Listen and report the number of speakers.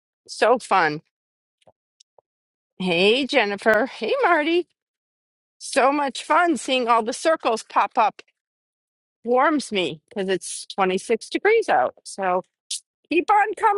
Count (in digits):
1